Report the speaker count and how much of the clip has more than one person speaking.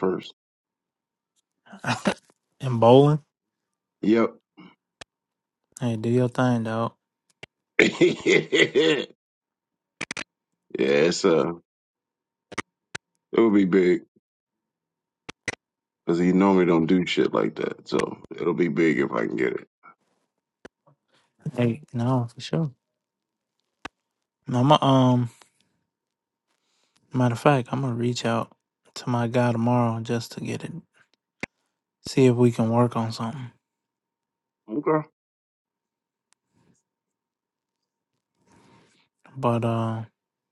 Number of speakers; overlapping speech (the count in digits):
2, no overlap